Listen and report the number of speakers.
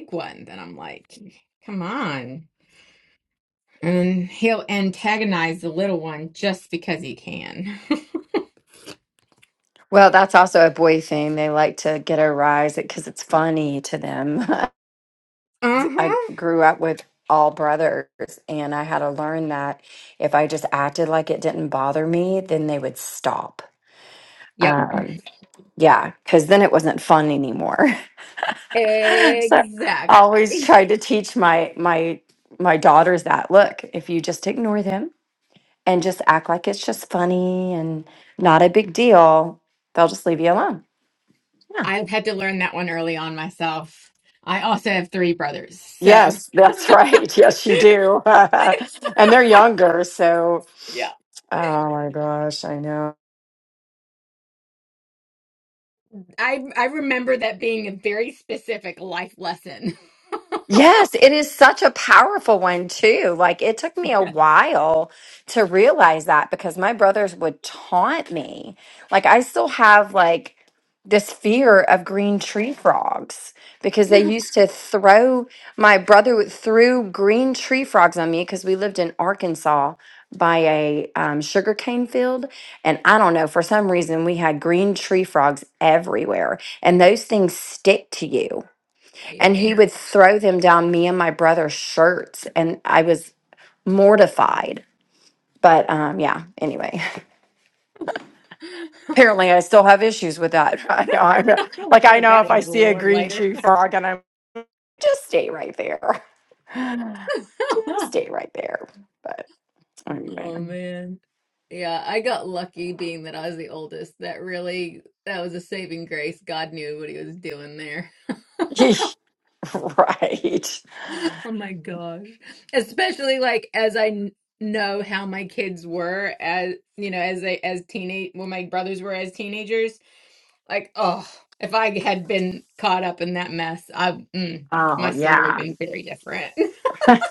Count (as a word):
two